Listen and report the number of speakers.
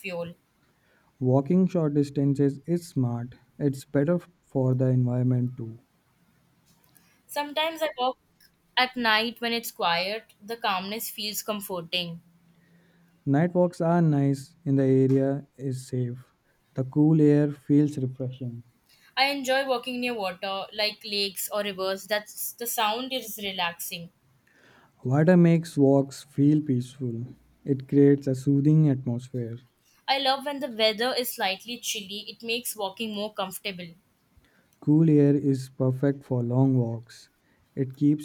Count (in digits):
2